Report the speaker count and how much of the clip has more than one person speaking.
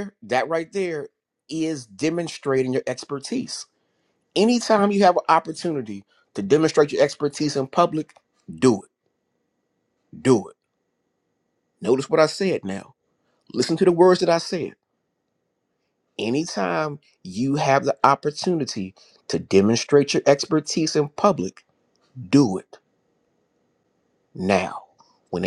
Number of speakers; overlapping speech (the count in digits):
1, no overlap